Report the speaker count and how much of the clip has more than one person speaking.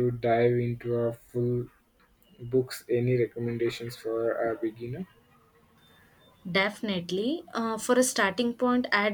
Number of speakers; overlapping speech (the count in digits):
2, no overlap